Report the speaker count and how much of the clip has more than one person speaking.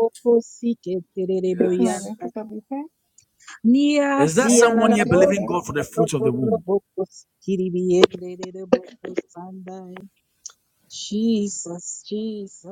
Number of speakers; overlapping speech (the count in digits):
3, about 14%